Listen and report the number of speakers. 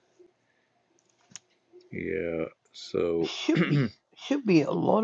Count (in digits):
2